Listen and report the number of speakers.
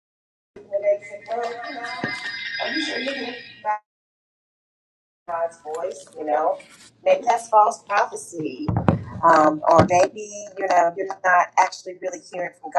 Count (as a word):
one